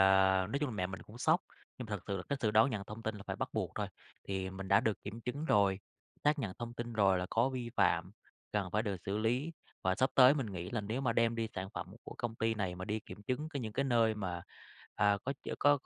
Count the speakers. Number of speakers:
1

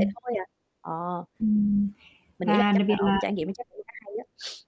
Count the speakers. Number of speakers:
2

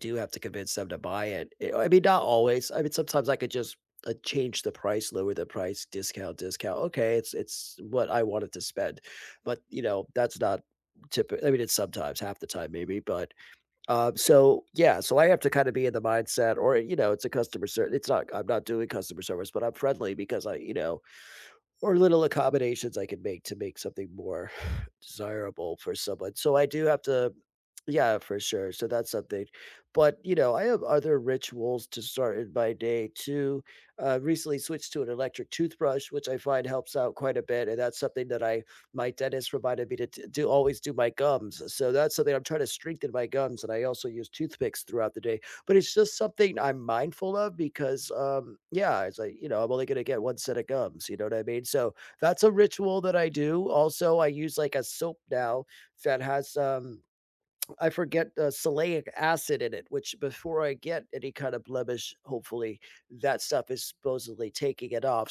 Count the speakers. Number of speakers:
1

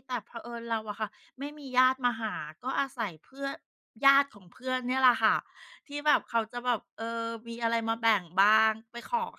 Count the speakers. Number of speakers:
1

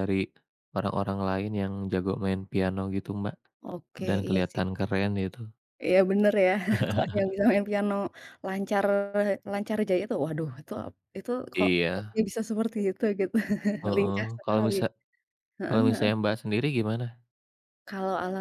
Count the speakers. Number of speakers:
2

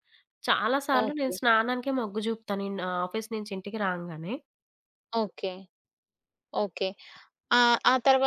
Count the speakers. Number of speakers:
2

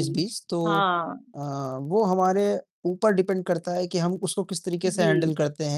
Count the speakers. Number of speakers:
2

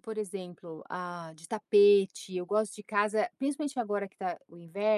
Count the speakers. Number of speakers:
1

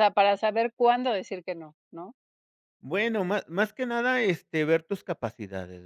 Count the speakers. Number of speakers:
2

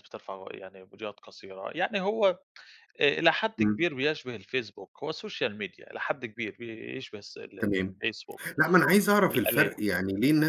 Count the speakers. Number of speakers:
2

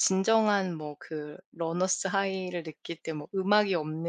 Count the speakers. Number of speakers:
1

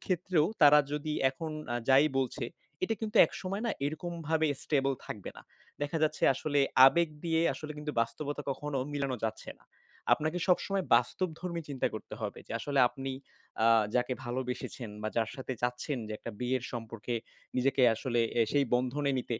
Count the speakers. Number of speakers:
1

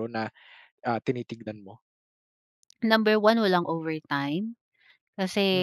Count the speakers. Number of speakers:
2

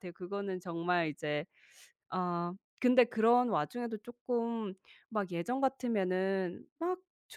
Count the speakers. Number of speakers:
1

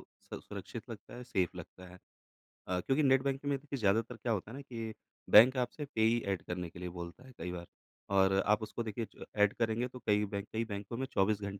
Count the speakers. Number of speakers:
1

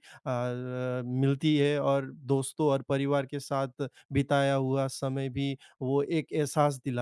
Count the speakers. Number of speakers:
1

